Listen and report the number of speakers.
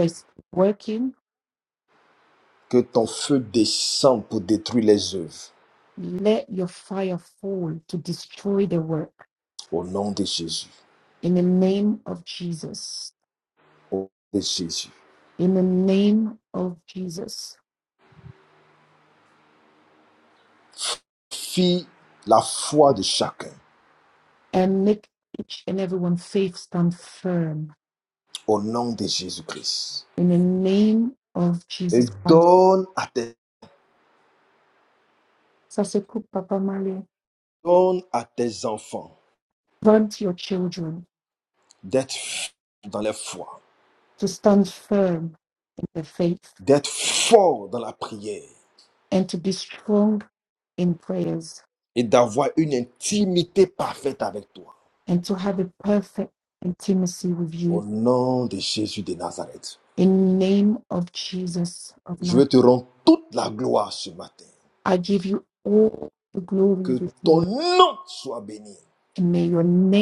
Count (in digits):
2